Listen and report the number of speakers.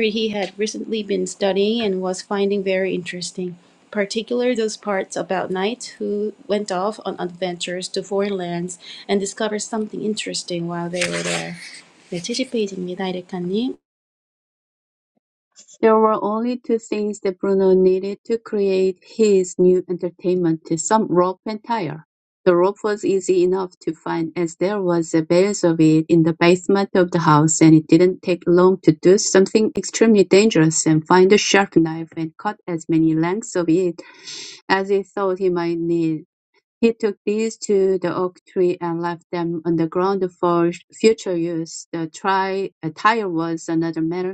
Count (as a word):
two